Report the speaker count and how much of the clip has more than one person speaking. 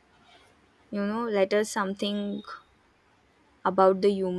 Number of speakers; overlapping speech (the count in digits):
1, no overlap